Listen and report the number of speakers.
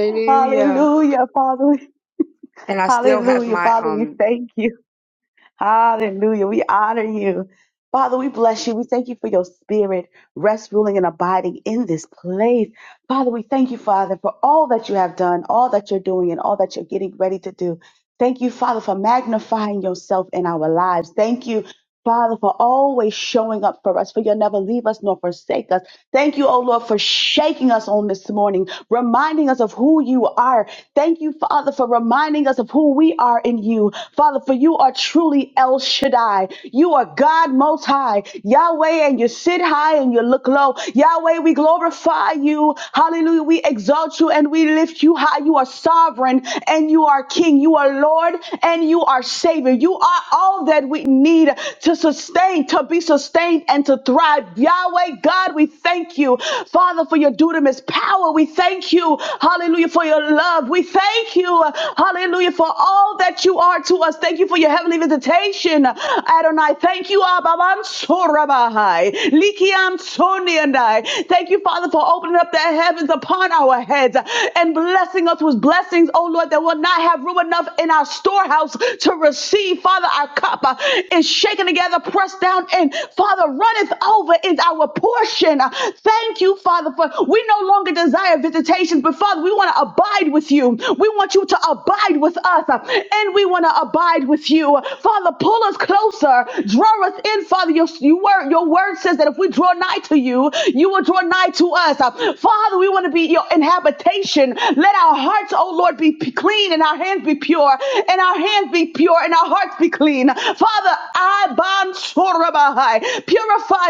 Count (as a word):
two